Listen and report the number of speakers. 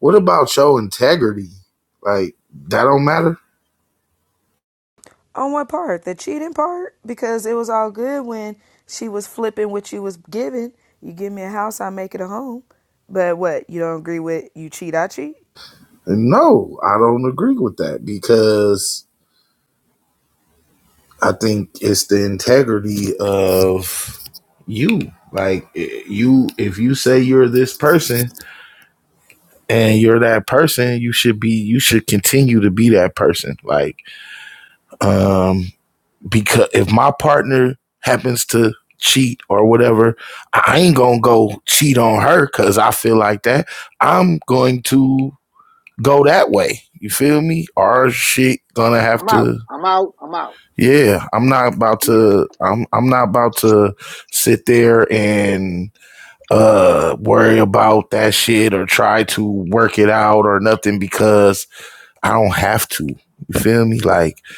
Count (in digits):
3